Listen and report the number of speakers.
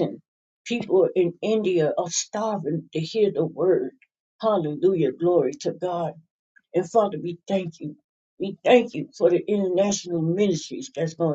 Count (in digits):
1